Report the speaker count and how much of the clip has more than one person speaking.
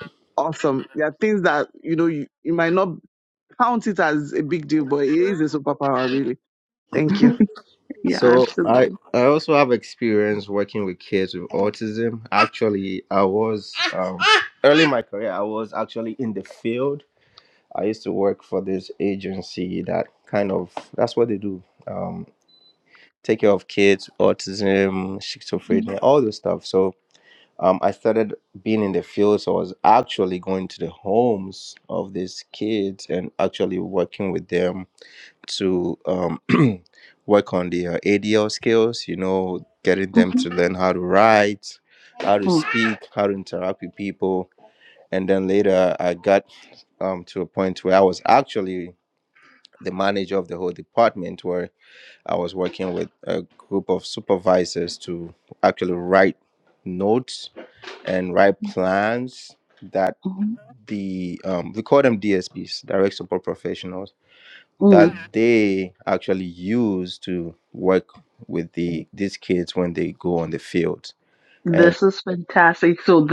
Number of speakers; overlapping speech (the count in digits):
3, about 2%